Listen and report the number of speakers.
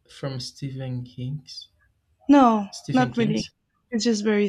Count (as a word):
two